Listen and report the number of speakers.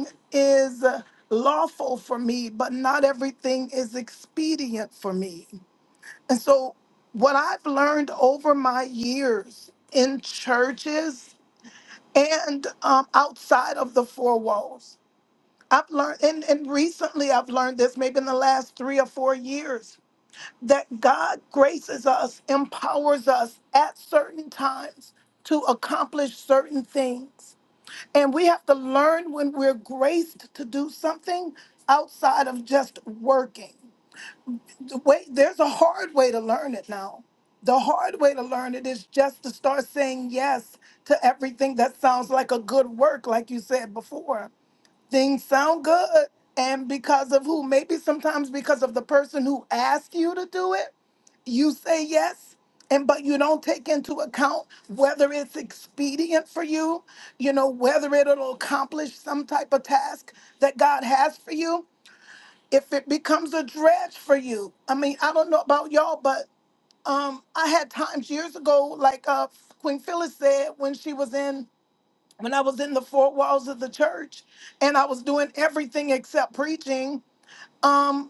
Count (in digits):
1